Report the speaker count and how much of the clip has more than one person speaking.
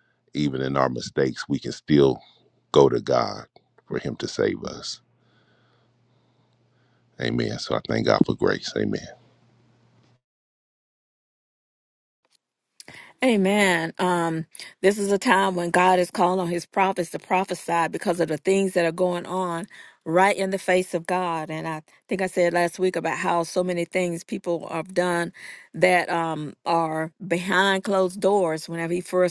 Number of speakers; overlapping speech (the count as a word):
two, no overlap